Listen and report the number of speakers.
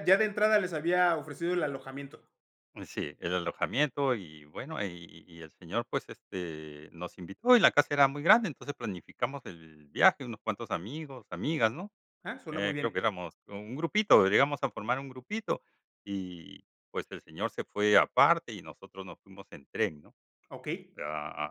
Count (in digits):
2